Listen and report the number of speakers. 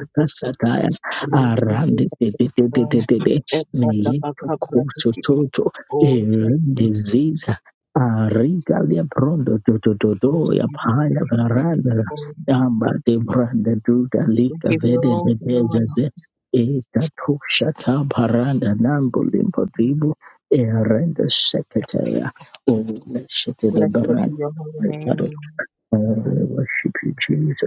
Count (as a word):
two